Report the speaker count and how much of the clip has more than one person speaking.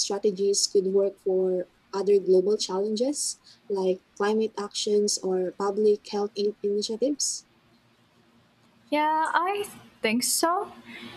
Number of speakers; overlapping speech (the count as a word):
two, no overlap